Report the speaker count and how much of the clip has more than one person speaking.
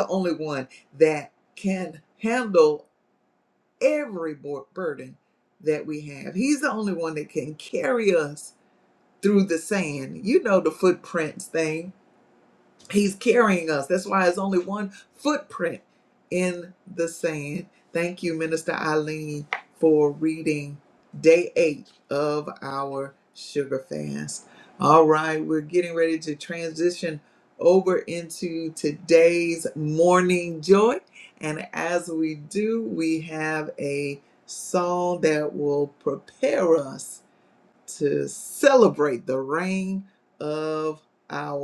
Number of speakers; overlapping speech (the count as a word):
one, no overlap